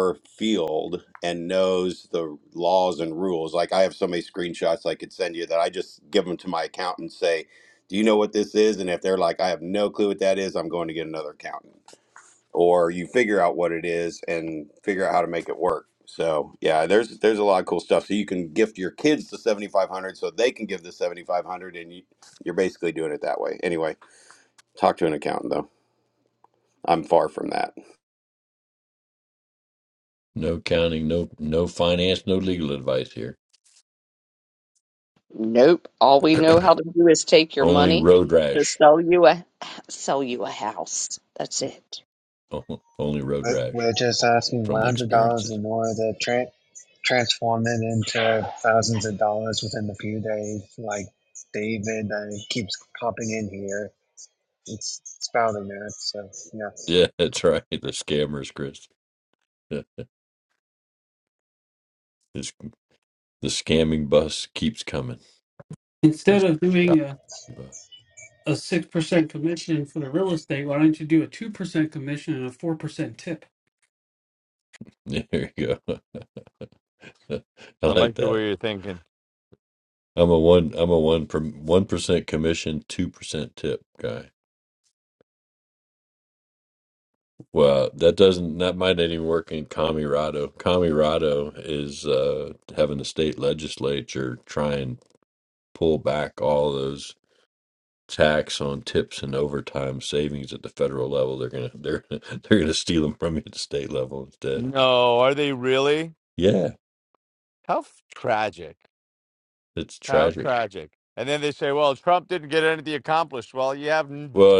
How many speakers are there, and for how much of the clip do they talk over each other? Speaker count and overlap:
6, about 3%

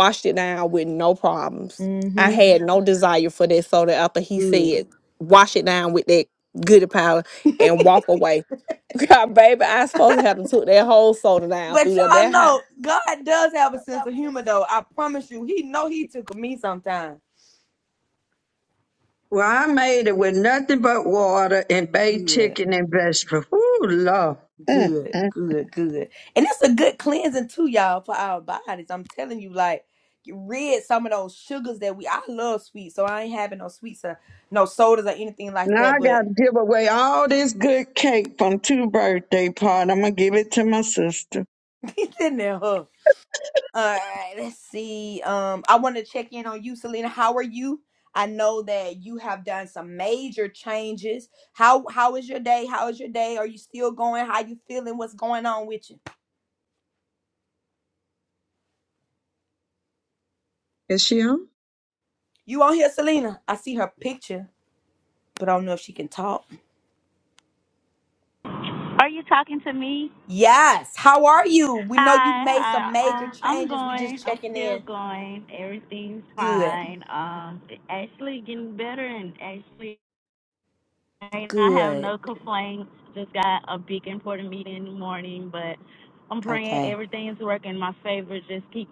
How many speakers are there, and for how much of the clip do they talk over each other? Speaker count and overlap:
4, about 8%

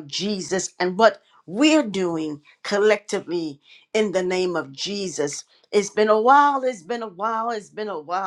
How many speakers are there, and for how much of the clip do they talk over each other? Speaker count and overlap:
1, no overlap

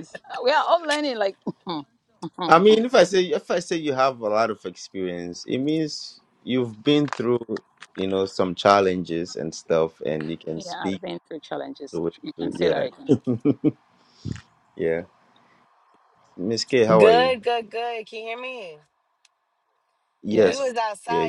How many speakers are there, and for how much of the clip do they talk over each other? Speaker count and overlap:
3, about 11%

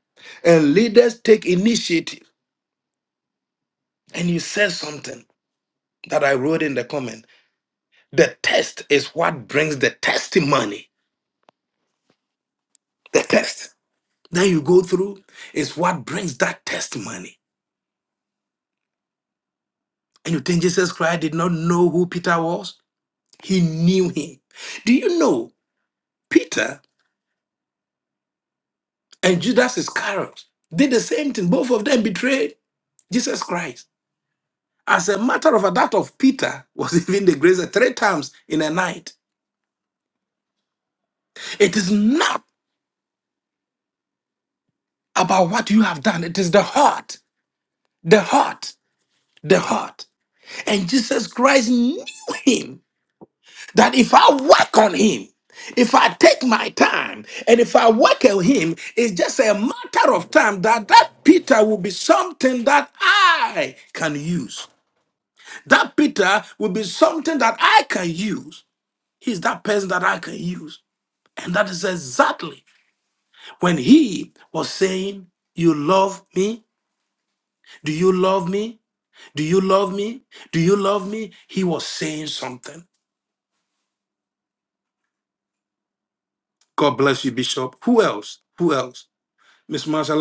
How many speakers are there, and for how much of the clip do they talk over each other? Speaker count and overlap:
1, no overlap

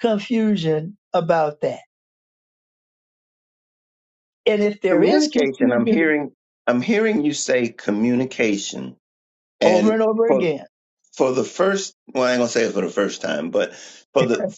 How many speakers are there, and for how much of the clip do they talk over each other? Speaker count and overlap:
2, about 12%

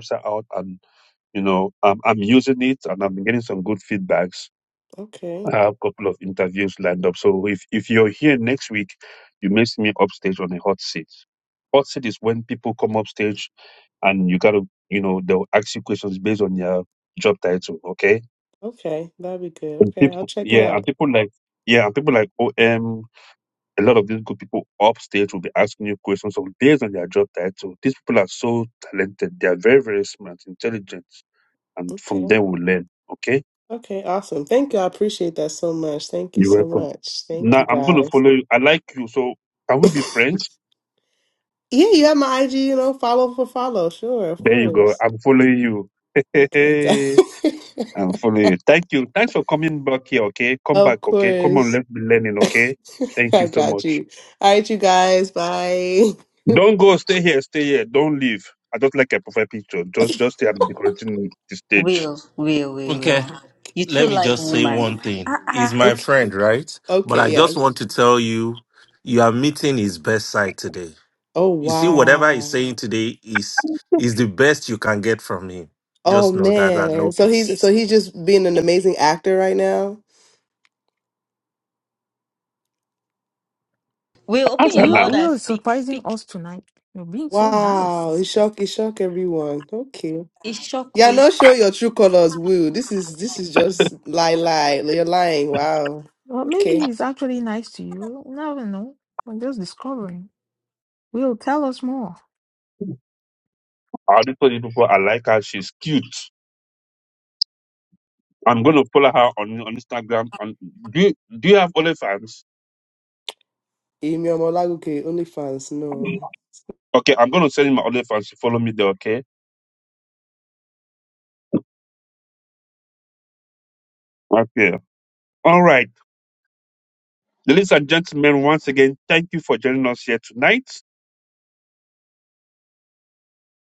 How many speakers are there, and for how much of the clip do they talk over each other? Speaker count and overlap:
5, about 9%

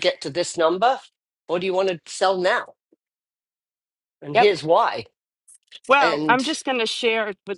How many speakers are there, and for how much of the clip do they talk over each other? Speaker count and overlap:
2, about 9%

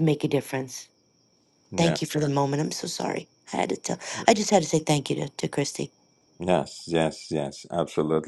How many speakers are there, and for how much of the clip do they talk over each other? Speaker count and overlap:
2, about 2%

